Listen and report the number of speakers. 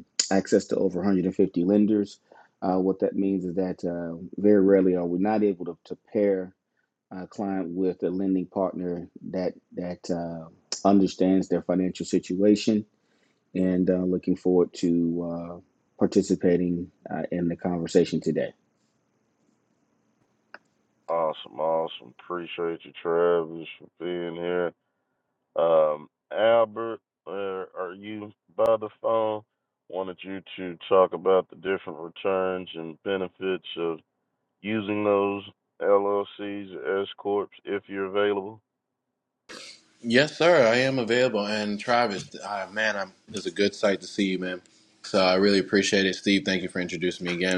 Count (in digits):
3